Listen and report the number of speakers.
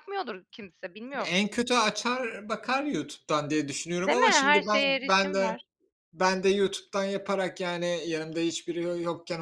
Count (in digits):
2